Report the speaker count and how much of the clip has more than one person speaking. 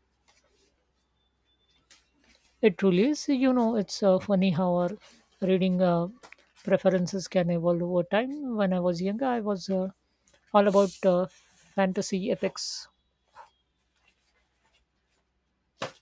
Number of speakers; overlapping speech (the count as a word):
one, no overlap